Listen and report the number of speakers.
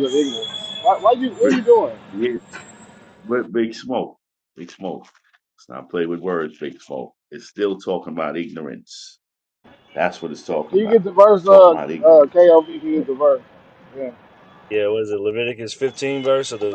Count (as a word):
three